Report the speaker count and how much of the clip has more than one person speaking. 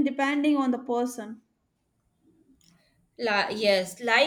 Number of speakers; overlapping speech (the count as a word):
two, no overlap